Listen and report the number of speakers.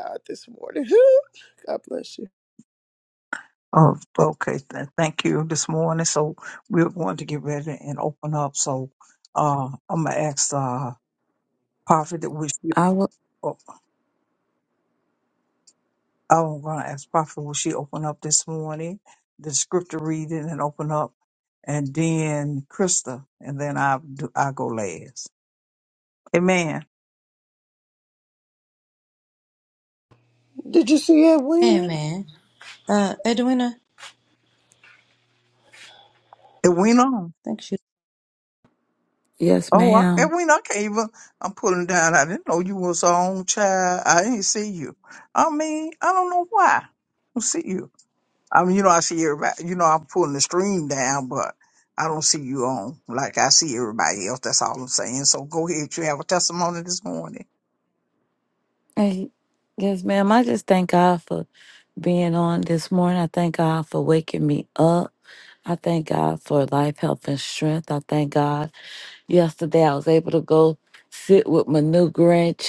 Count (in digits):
4